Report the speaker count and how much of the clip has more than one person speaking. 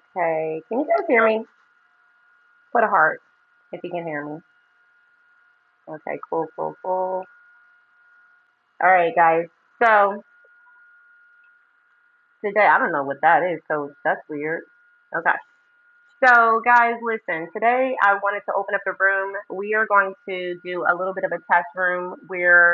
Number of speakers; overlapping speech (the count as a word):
one, no overlap